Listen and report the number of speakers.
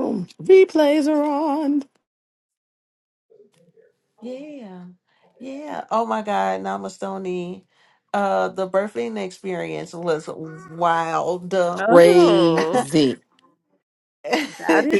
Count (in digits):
3